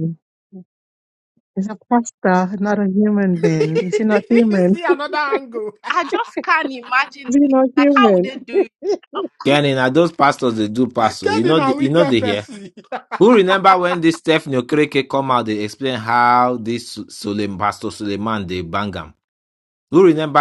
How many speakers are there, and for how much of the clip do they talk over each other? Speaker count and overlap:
4, about 12%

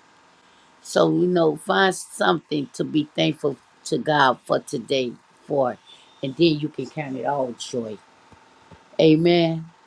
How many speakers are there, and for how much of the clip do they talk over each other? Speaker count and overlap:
1, no overlap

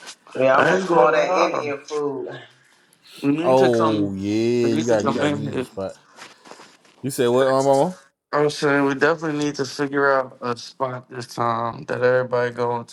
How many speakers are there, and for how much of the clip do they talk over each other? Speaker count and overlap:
3, about 23%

